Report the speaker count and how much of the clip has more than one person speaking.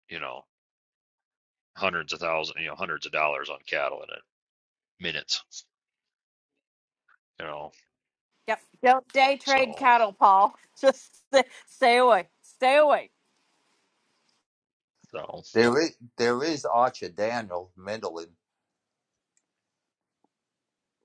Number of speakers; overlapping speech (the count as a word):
three, about 2%